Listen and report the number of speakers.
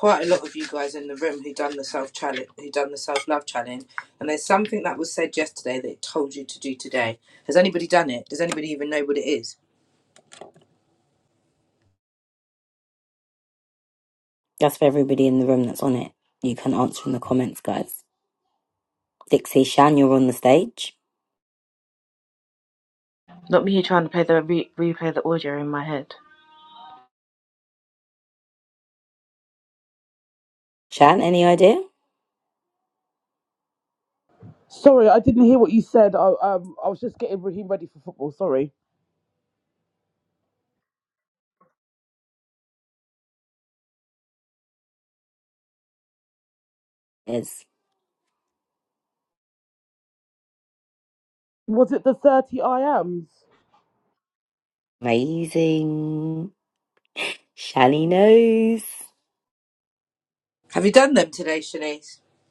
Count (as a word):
four